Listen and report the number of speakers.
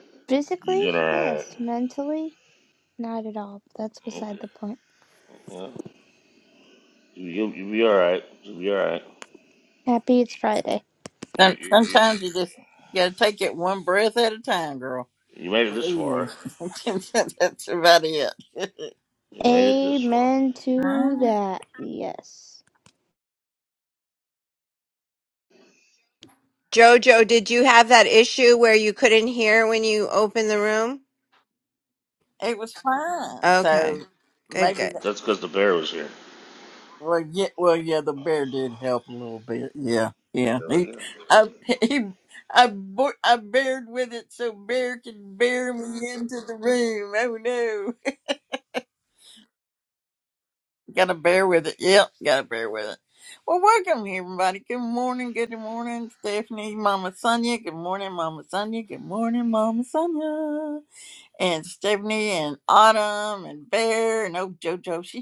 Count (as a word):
four